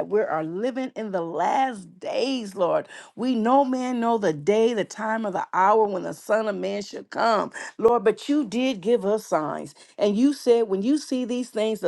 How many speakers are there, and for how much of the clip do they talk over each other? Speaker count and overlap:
1, no overlap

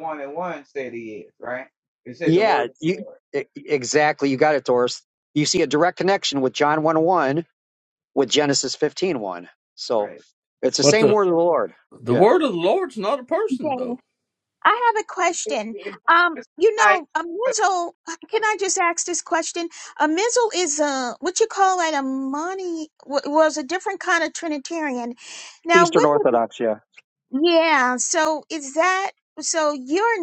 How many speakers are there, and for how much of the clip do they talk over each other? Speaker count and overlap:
4, about 10%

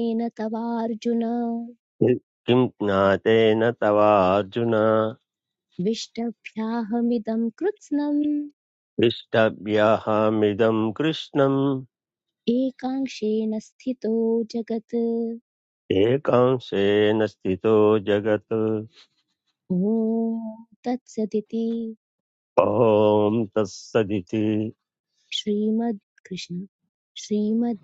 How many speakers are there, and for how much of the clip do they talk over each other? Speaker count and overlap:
2, no overlap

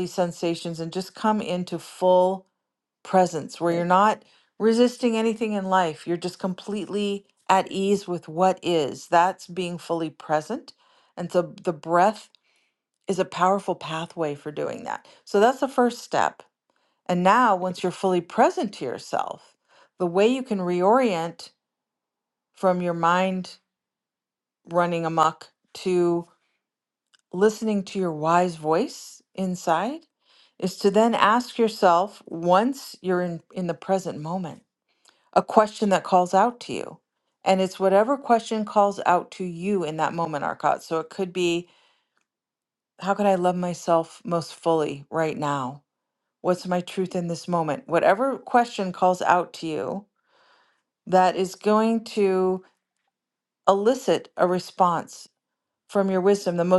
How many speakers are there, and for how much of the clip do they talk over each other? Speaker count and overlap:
1, no overlap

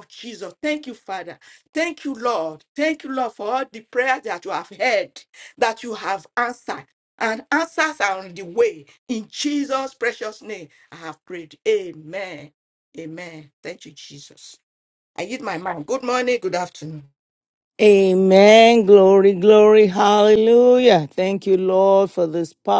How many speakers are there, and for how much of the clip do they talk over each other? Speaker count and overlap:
2, no overlap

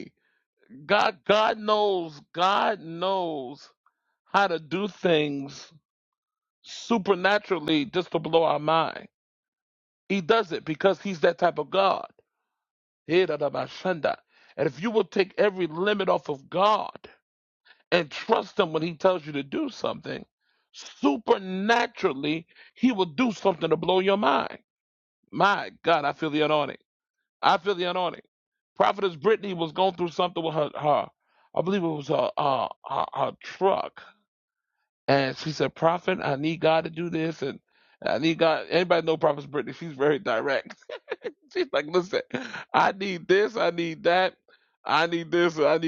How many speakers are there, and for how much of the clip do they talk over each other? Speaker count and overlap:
1, no overlap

